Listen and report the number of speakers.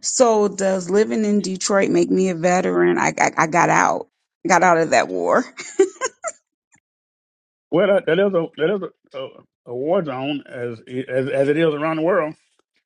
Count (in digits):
2